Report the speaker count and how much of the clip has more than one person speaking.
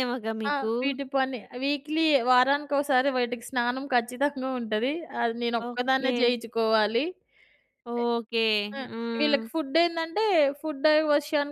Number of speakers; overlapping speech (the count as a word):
two, about 14%